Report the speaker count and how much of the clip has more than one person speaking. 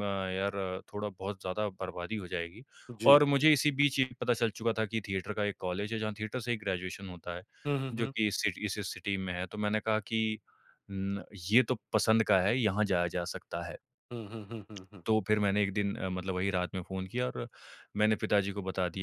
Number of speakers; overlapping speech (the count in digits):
2, about 2%